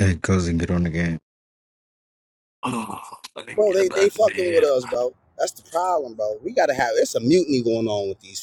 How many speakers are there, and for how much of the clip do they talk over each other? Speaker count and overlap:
three, about 14%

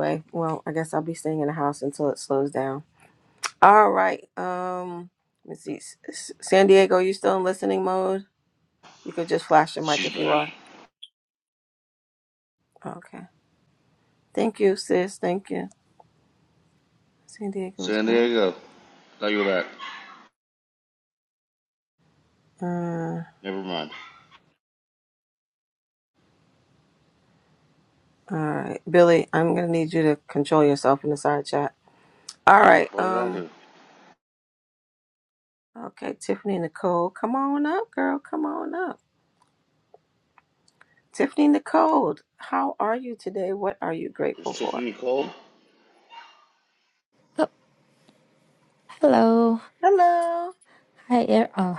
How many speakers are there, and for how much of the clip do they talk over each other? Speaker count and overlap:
three, about 4%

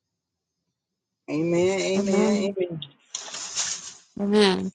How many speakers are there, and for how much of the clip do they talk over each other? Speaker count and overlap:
two, about 13%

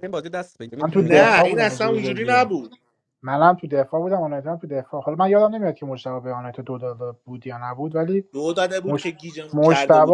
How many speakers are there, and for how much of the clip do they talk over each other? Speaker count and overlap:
three, about 25%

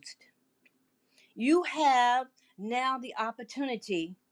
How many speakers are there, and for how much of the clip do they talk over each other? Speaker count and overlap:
one, no overlap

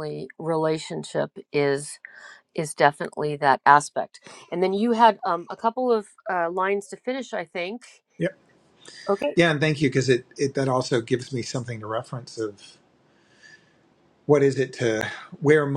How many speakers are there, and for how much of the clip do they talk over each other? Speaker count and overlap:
two, no overlap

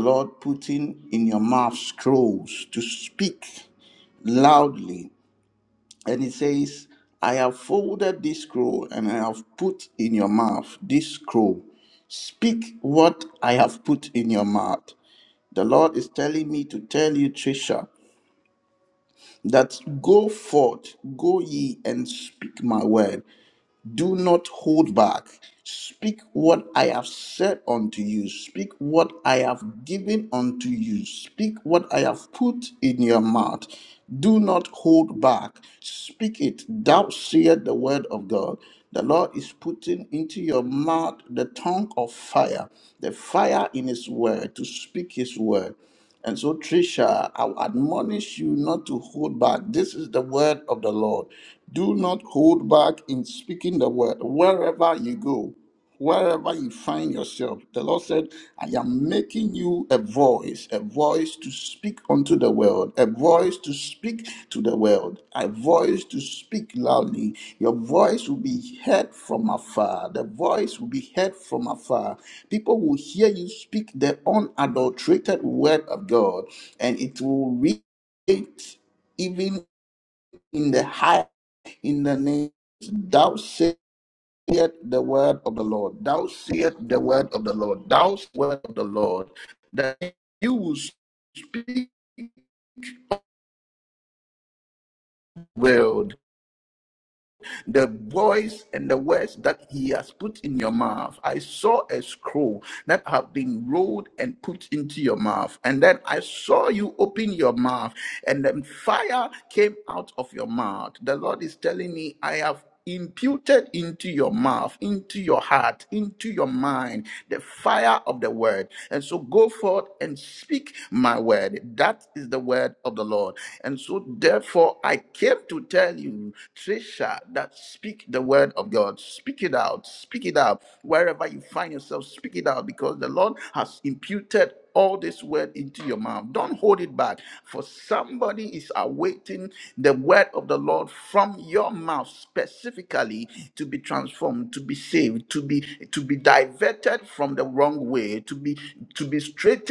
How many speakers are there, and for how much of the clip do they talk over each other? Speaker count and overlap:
one, no overlap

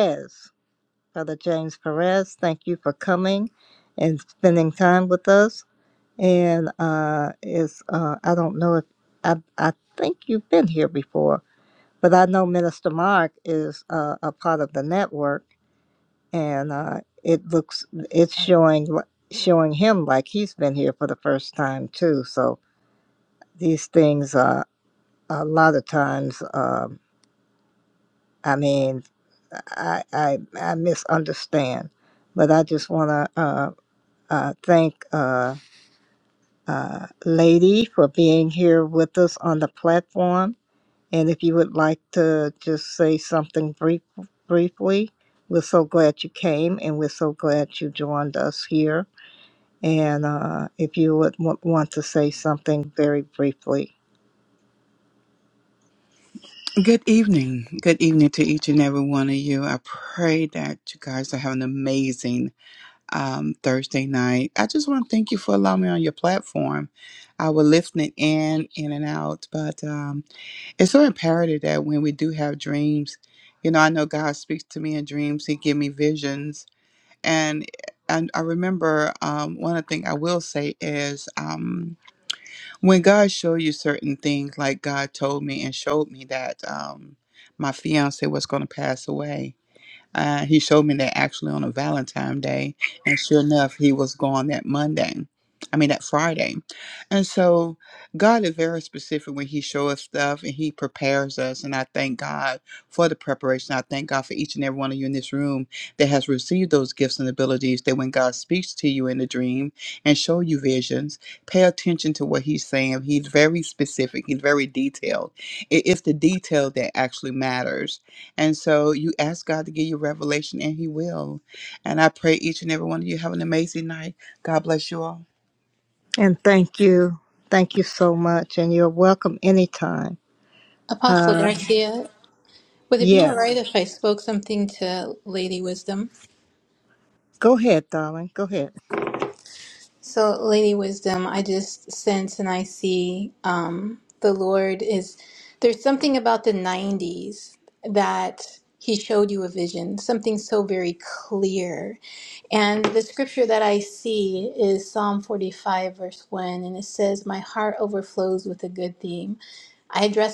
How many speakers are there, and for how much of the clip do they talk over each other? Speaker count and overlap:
three, about 1%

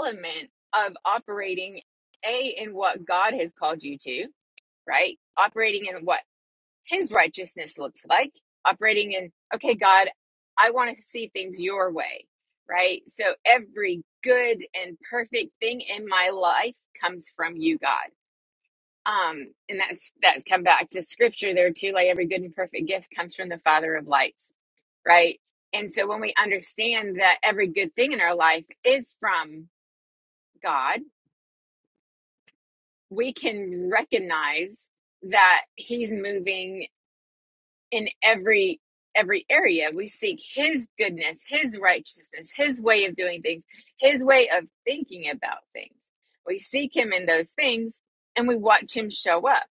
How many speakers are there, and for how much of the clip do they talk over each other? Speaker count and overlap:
one, no overlap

